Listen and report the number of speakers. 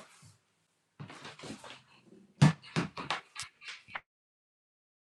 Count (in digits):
0